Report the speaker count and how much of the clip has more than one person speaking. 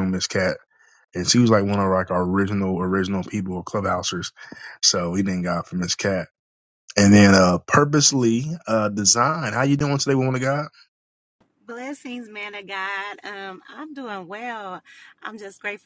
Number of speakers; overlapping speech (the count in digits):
2, no overlap